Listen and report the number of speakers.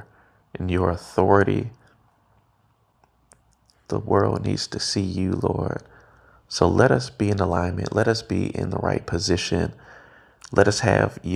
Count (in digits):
1